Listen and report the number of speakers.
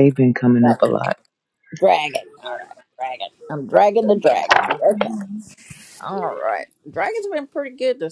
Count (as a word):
two